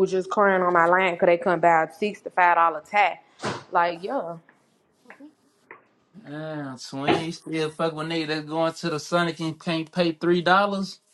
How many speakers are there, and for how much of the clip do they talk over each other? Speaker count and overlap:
2, no overlap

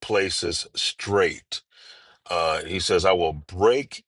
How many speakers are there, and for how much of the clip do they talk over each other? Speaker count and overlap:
1, no overlap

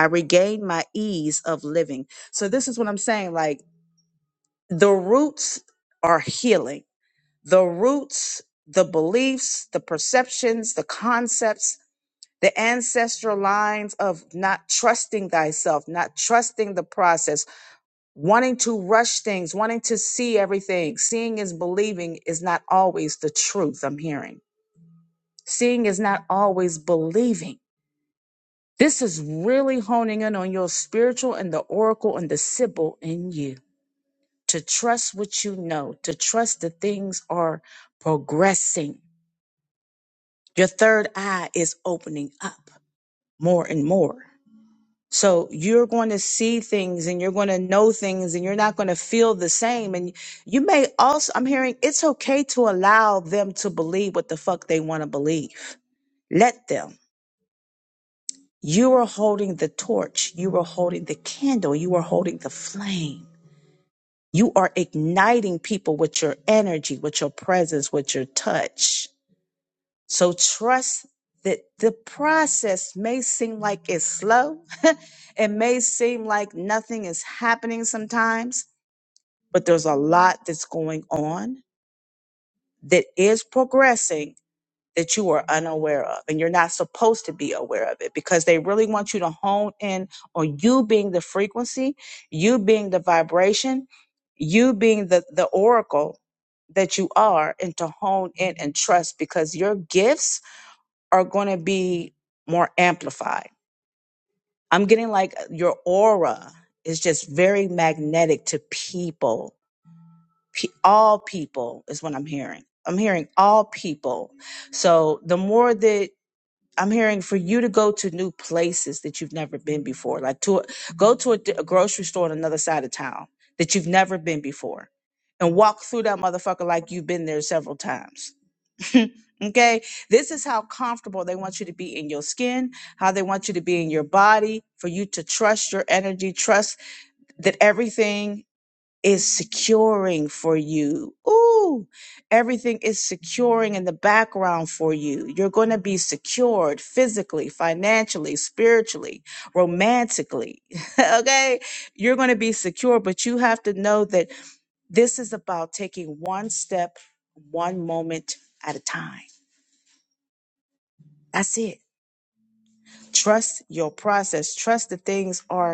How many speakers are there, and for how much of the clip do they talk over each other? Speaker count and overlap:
1, no overlap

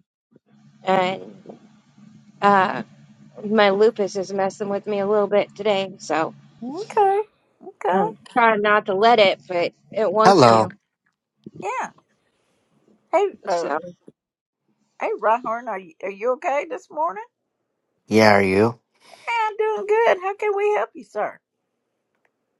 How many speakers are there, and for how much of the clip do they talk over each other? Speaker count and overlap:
3, about 4%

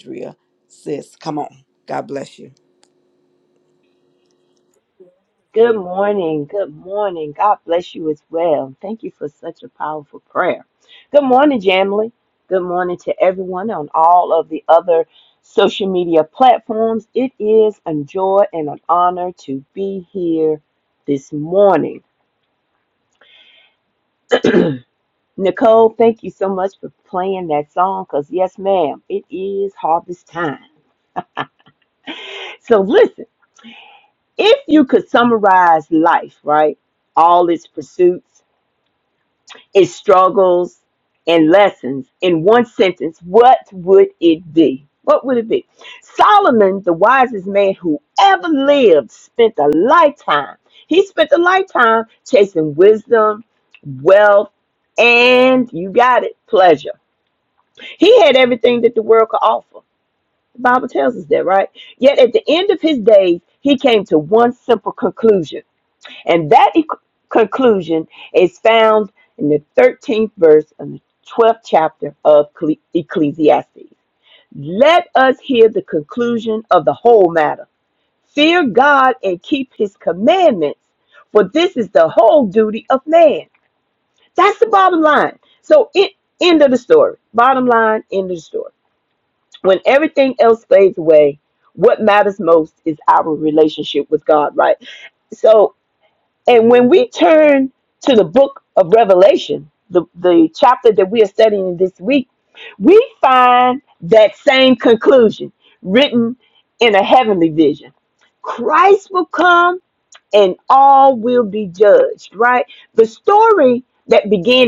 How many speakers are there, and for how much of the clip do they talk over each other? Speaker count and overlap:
2, no overlap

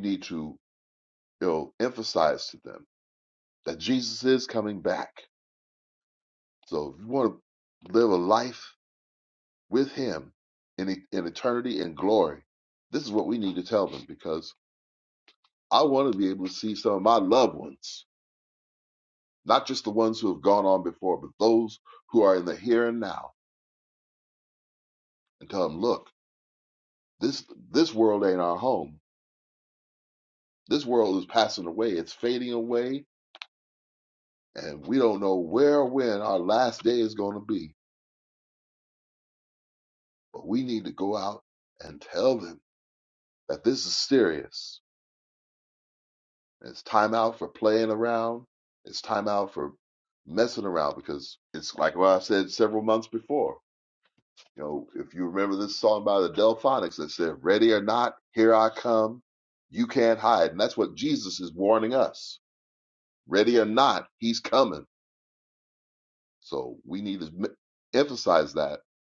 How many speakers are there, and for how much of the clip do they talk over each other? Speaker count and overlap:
1, no overlap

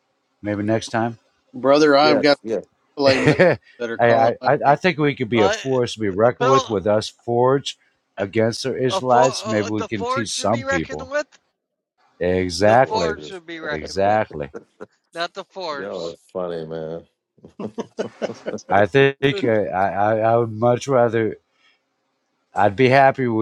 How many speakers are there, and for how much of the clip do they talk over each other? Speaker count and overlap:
4, about 24%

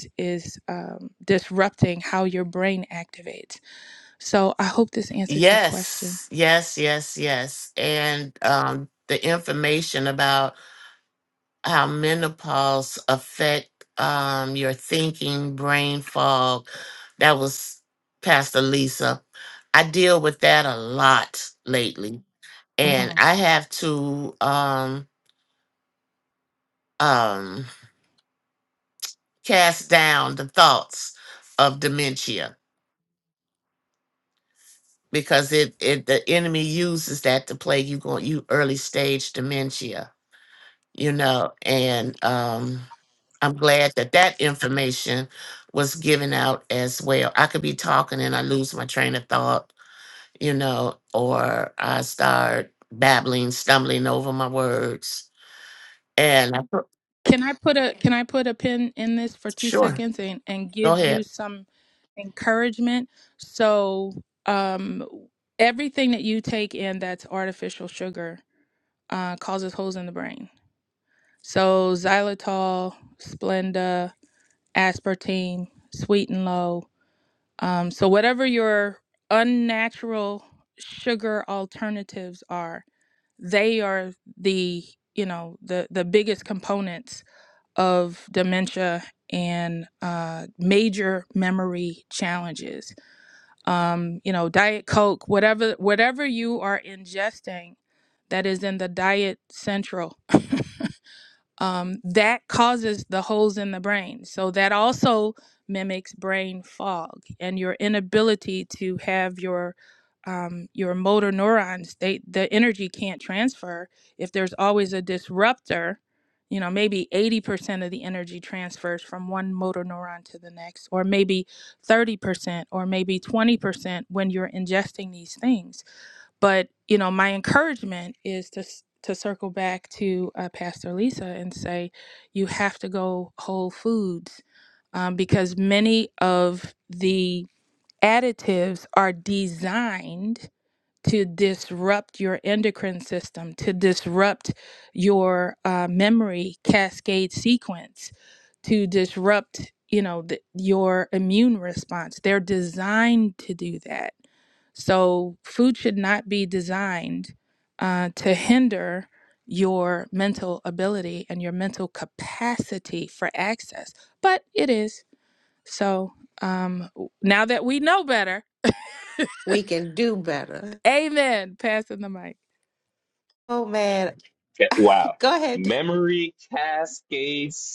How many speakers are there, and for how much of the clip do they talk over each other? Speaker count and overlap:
4, about 1%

